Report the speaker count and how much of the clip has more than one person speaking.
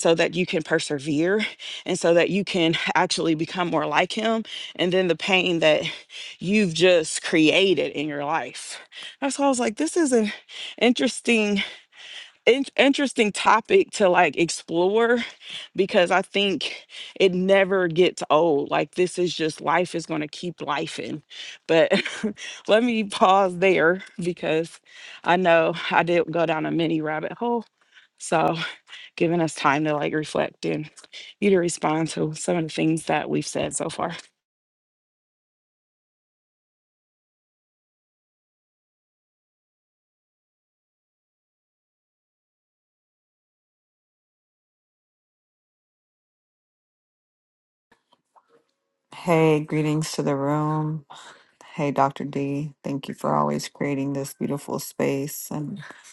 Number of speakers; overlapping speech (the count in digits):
2, no overlap